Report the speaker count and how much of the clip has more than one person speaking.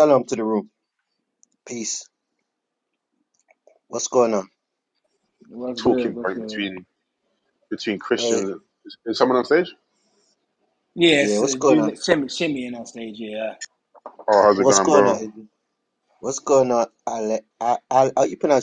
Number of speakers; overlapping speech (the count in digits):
3, about 14%